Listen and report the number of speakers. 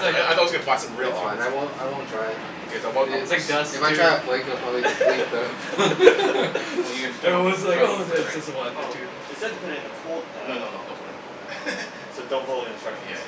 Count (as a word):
four